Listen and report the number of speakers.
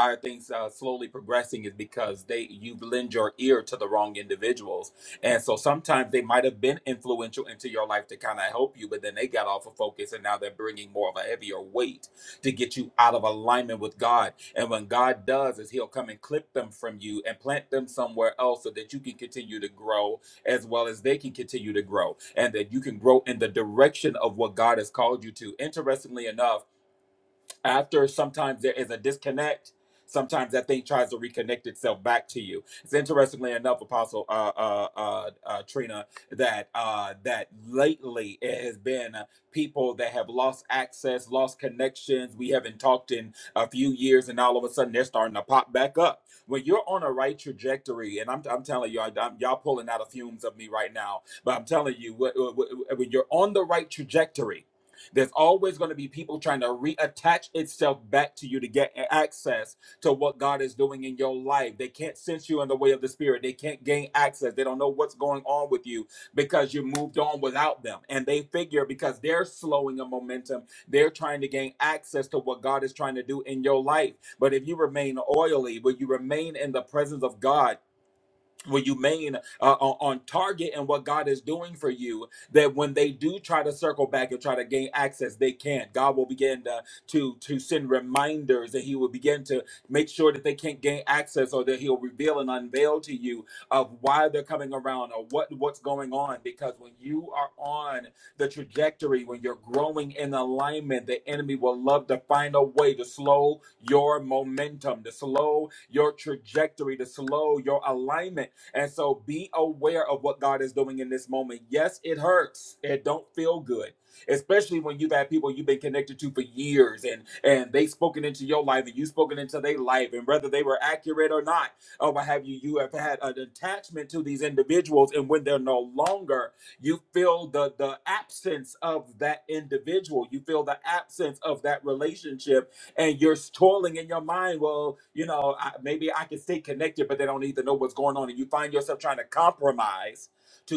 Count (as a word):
one